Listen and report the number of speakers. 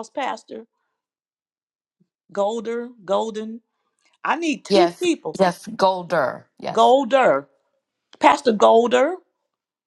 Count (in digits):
2